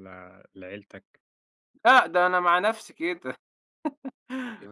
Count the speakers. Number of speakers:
2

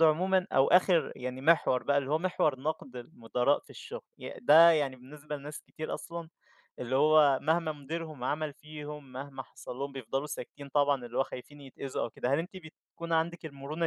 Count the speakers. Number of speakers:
1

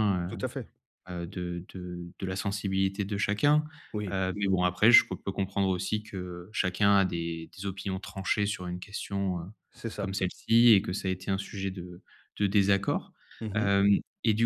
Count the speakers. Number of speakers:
2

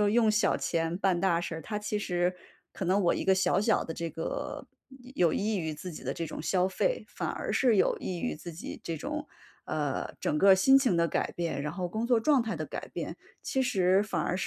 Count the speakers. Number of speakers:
1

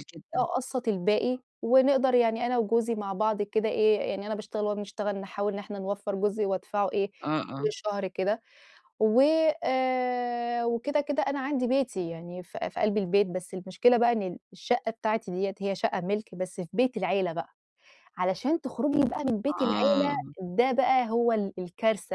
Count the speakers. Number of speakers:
2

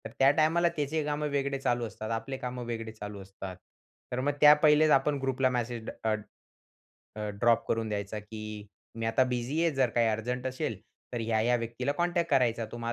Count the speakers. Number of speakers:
1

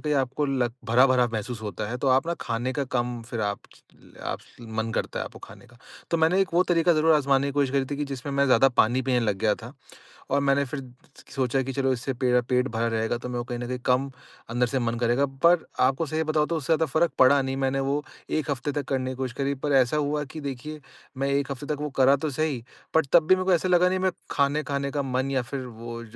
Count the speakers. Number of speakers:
1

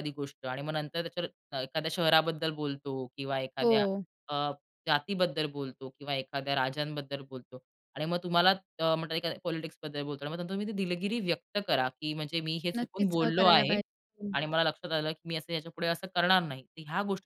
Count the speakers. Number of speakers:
2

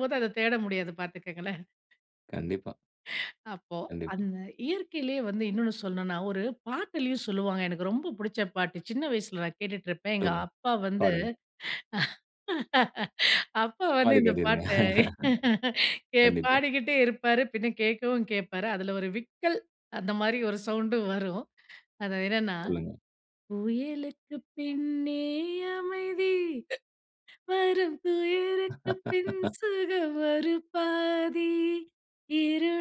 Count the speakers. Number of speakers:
2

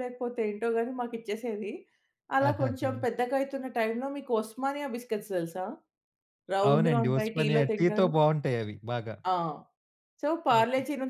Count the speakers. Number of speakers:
2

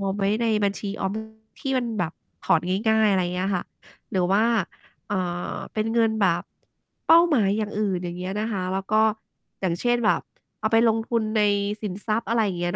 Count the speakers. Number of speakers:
1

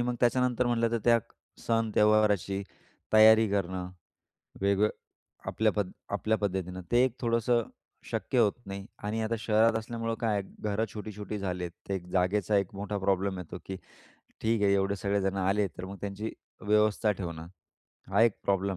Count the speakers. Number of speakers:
1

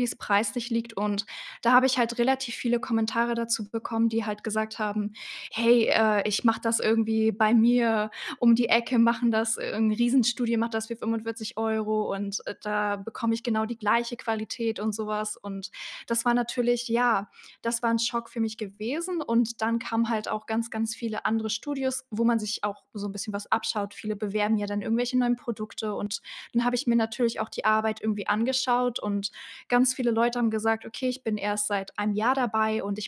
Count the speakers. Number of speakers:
1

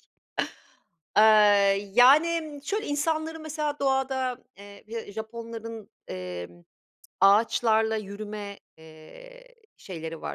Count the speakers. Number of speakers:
1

